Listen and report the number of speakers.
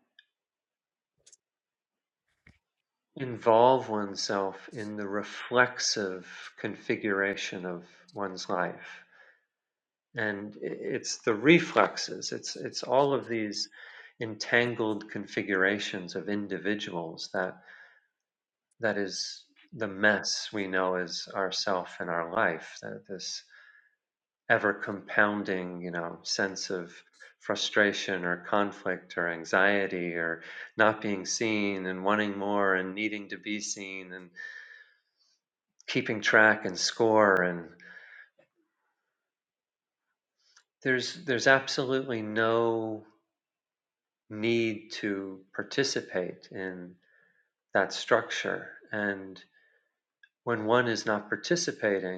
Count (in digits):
1